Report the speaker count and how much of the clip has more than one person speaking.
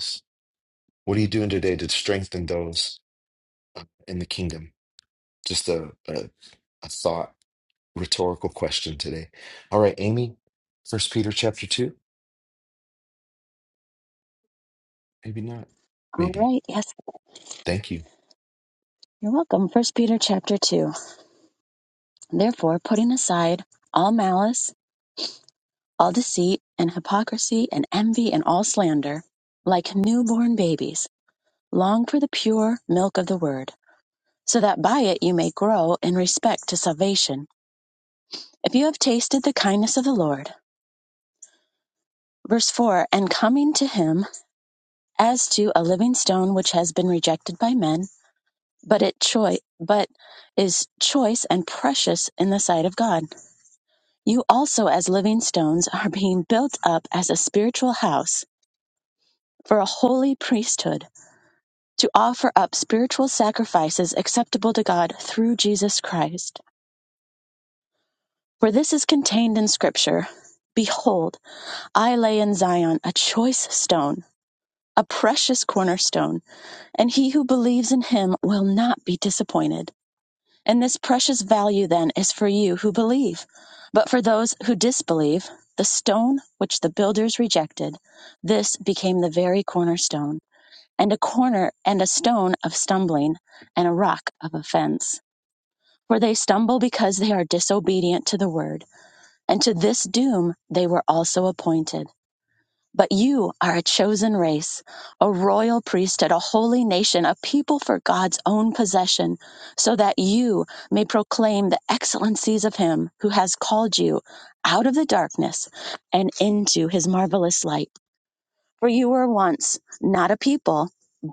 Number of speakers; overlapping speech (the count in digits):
2, under 1%